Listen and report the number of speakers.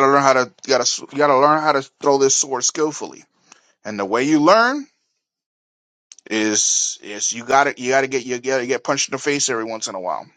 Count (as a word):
one